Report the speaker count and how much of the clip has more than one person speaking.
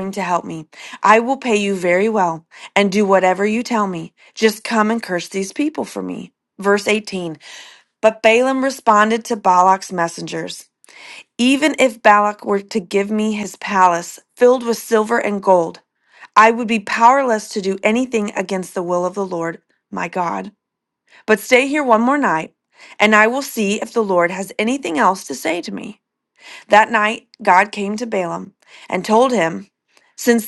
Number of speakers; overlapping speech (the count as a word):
one, no overlap